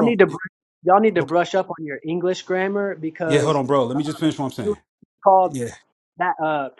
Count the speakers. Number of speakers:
2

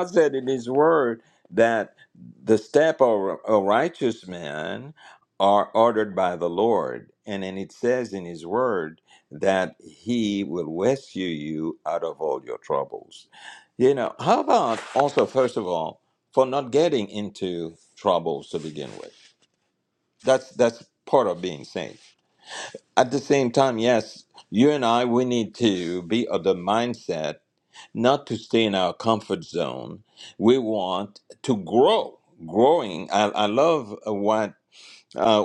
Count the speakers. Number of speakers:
1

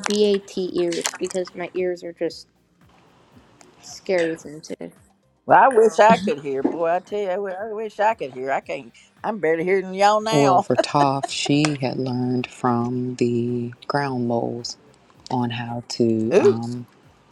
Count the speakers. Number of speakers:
3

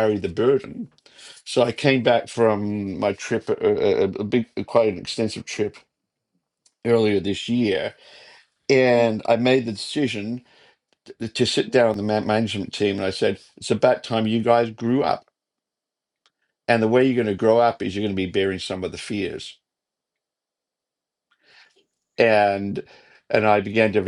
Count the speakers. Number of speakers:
1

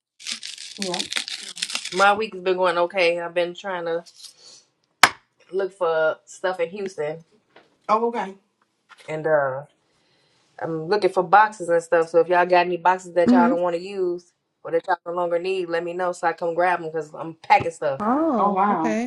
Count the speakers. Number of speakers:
3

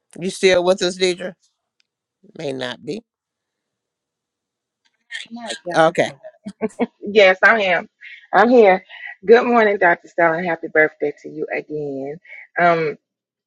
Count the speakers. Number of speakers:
2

